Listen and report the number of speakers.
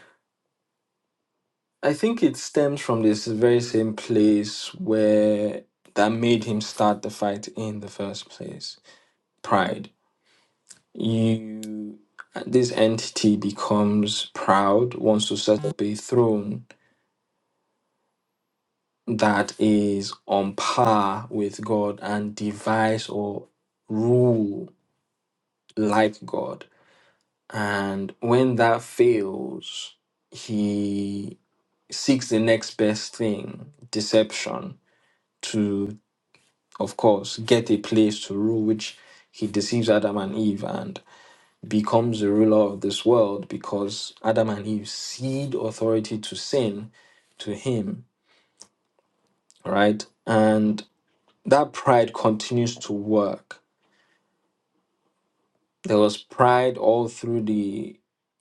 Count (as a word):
one